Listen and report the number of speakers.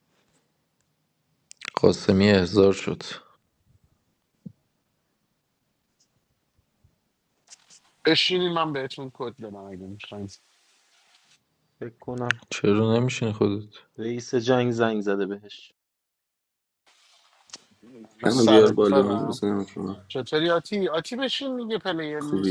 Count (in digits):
4